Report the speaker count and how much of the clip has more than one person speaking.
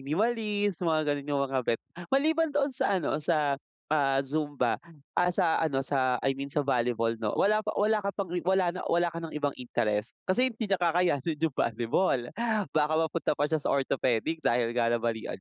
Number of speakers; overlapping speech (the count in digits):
1, no overlap